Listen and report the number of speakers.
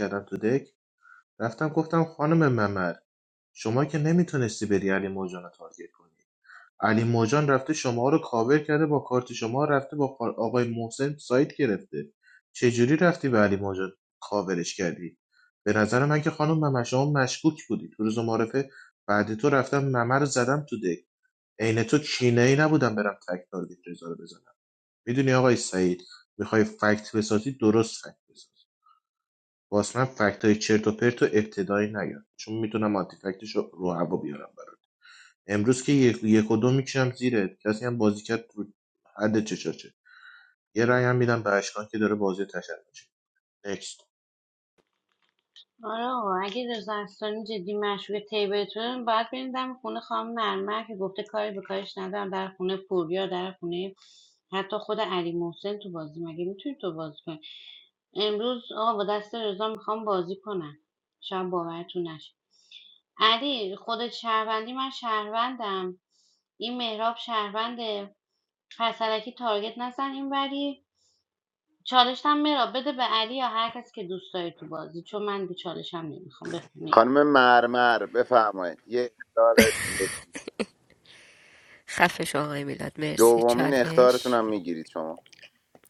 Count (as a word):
four